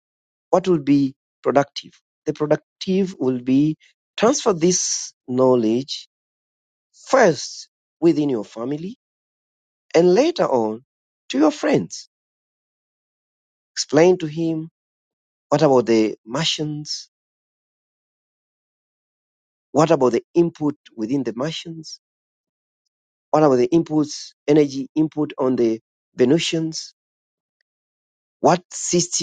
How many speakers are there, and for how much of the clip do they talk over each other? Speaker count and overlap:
one, no overlap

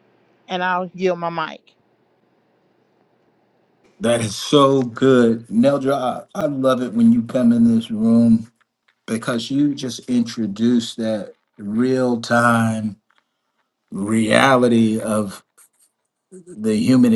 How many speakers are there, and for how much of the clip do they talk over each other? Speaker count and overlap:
two, no overlap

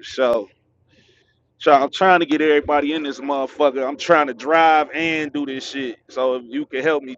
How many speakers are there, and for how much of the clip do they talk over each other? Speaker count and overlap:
one, no overlap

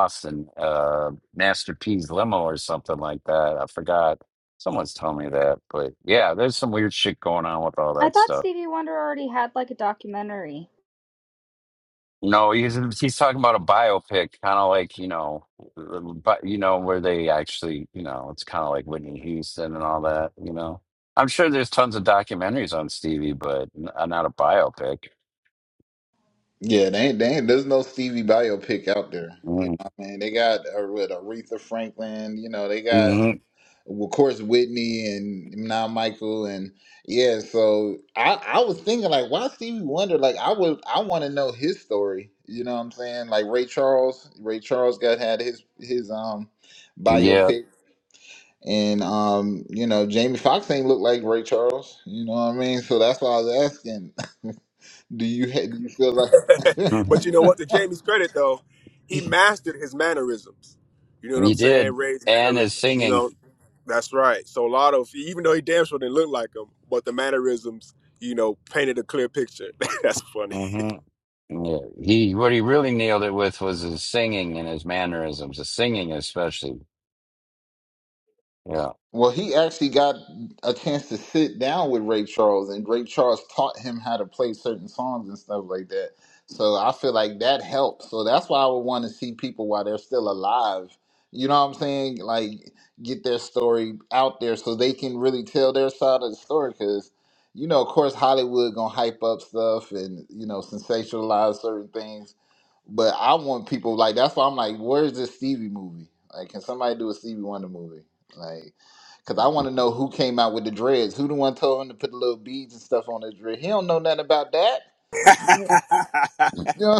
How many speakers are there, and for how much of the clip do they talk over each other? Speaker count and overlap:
four, about 3%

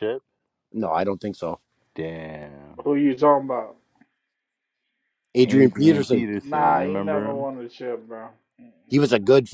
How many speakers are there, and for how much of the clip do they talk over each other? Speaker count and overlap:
three, about 19%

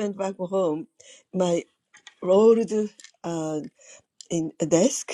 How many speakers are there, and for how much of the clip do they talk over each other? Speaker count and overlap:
one, no overlap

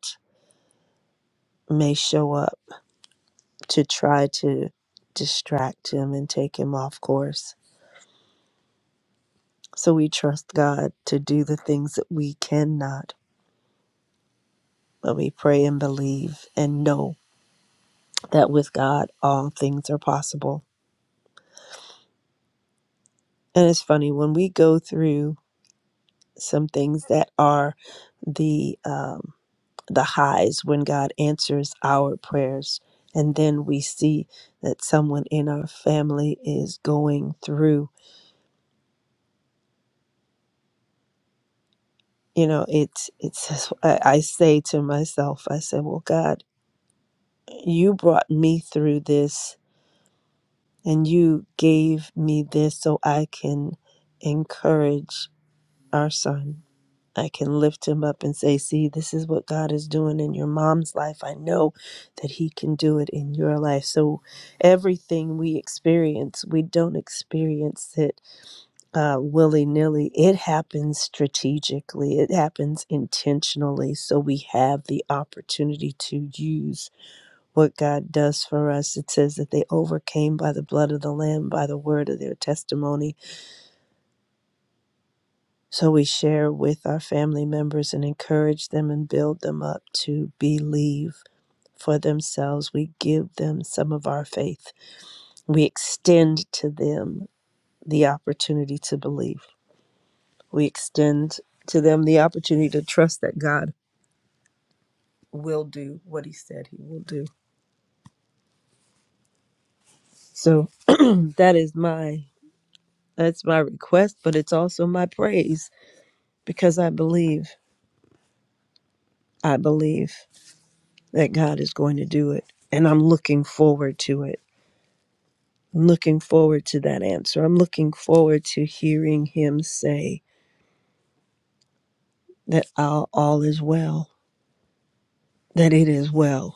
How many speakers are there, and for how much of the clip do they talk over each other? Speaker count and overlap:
one, no overlap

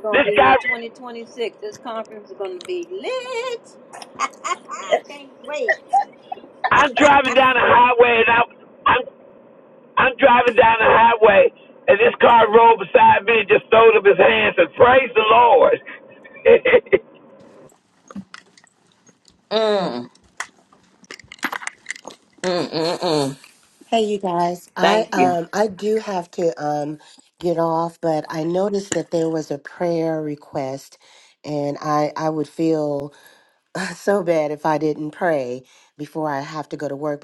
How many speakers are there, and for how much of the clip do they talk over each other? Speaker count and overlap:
four, about 3%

